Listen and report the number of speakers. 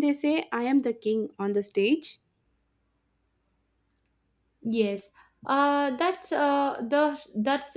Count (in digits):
2